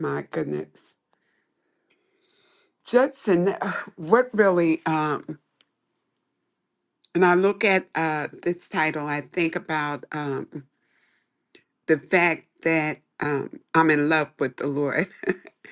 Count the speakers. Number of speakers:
1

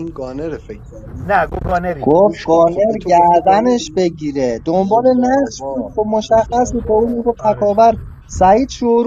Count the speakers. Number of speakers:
3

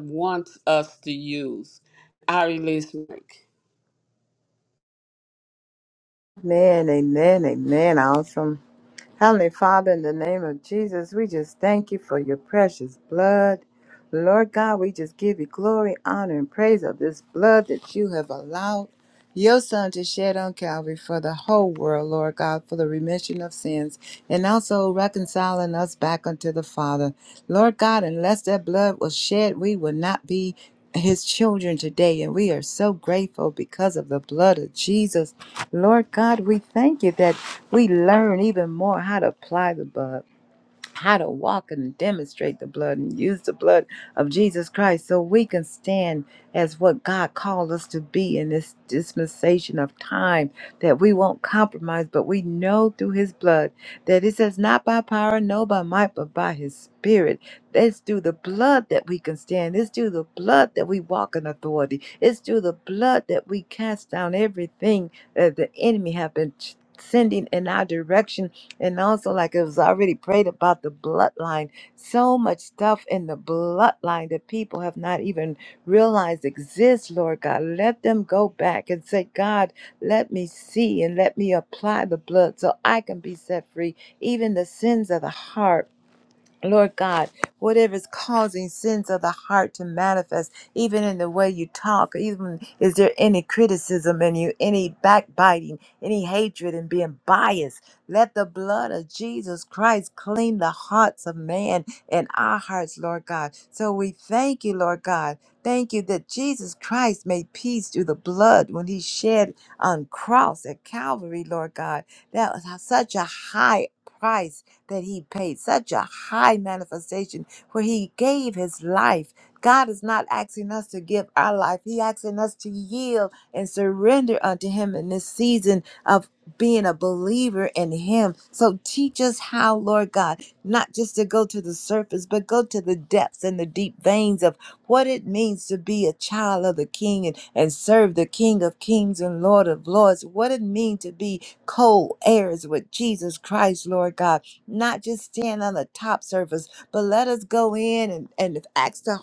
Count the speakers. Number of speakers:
2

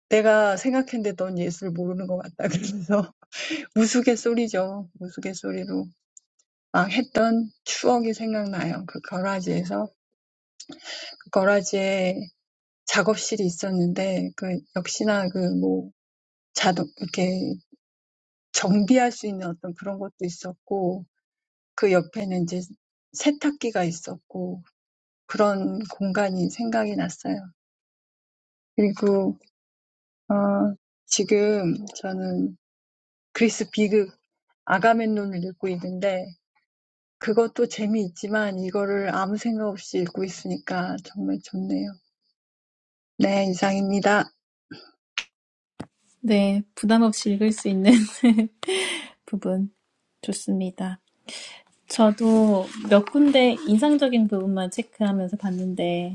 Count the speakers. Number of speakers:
2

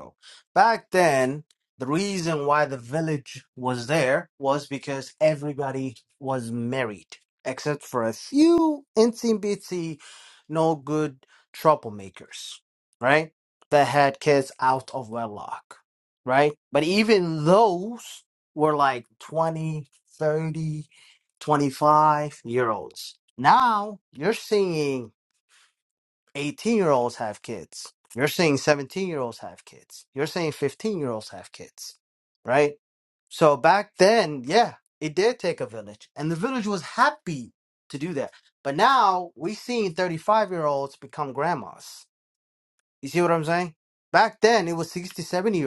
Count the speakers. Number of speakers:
1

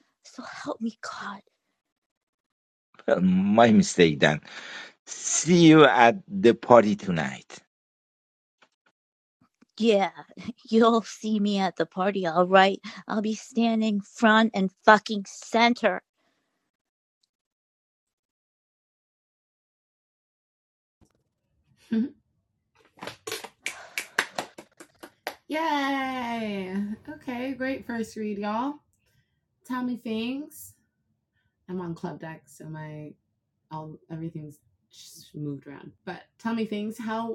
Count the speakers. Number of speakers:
3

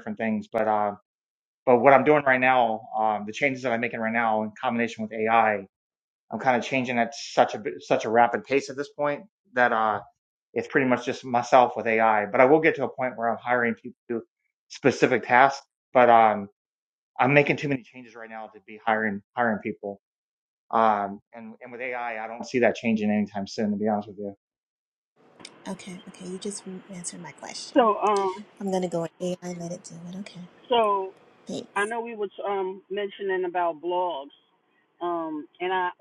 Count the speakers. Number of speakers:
3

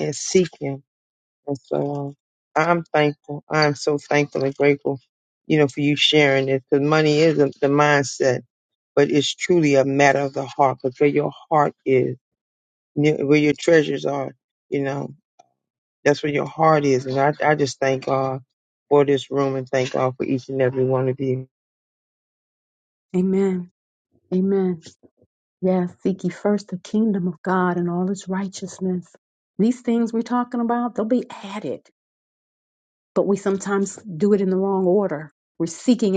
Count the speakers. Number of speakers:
2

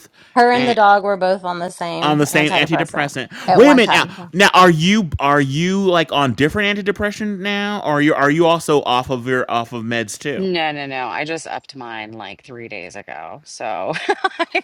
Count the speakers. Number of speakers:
3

